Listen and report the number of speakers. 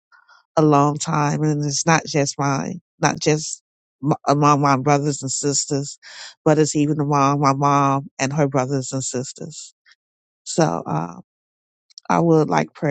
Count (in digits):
1